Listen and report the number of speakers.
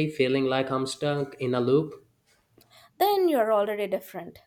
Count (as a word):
two